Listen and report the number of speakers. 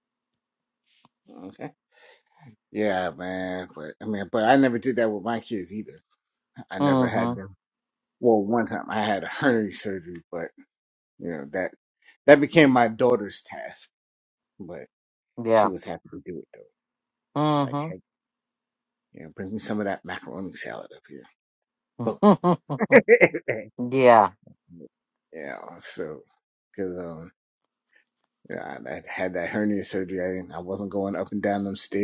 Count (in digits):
2